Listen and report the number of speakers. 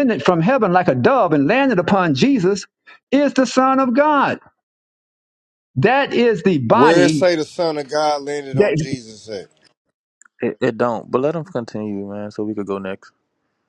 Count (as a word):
three